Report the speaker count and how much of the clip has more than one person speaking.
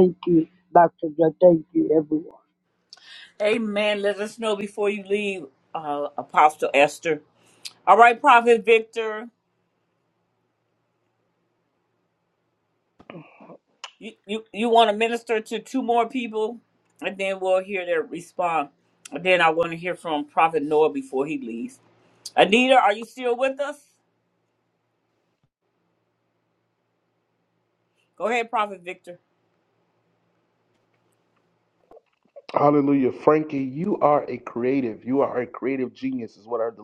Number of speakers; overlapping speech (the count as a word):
three, no overlap